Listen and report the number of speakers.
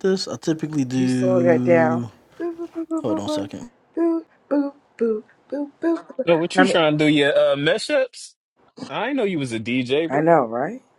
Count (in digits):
3